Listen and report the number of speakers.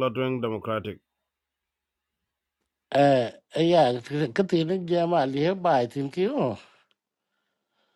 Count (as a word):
two